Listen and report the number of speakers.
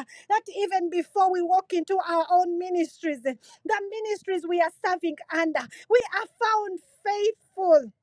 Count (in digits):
1